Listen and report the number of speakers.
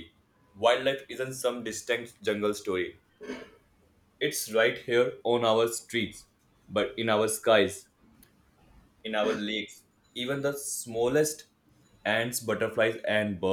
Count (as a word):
one